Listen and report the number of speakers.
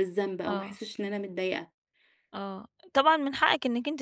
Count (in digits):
2